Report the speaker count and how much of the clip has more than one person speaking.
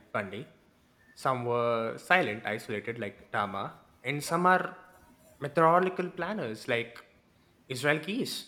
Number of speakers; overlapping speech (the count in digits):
1, no overlap